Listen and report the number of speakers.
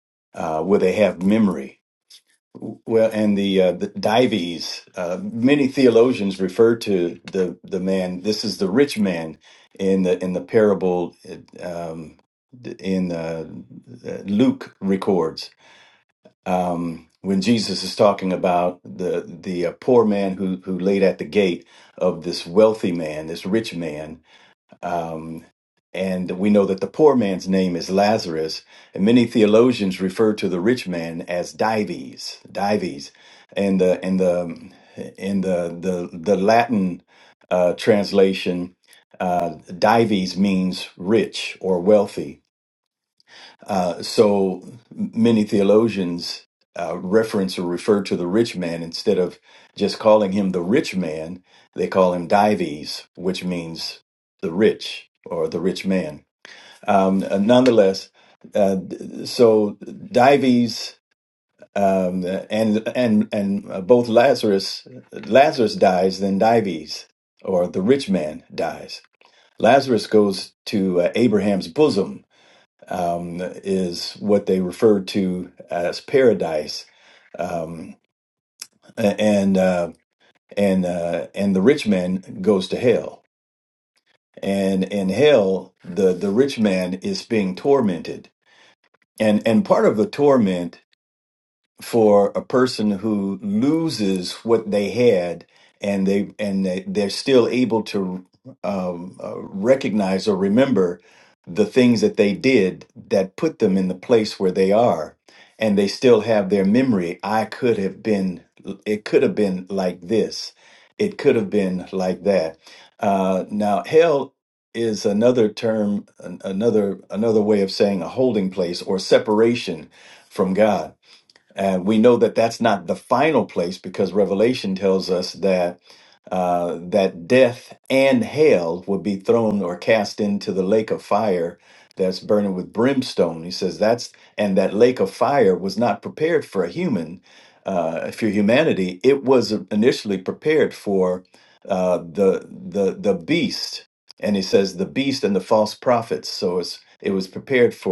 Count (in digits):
1